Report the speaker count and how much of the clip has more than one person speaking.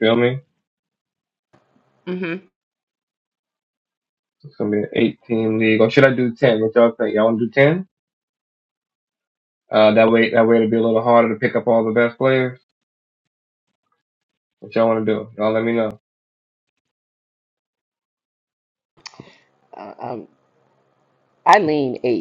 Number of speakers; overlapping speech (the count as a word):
two, no overlap